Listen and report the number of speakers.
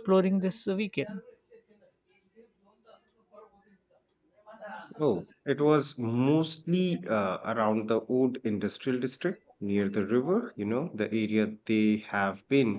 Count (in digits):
2